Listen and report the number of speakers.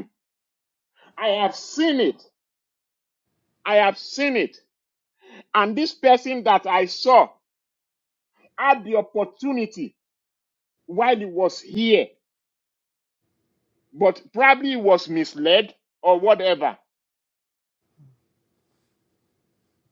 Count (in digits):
1